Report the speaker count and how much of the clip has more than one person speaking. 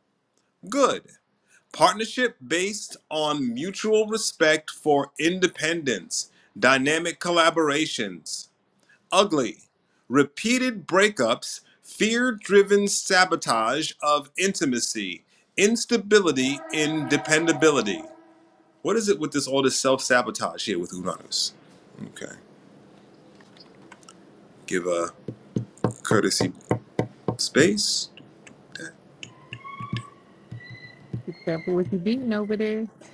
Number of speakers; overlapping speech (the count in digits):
2, no overlap